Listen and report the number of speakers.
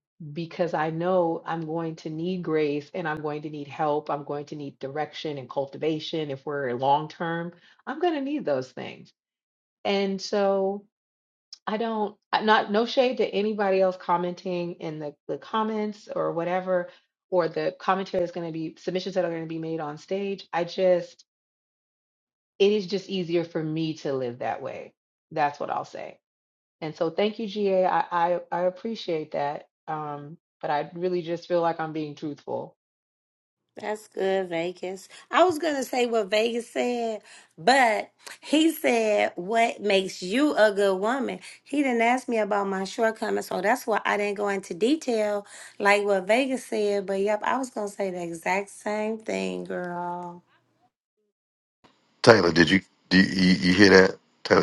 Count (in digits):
3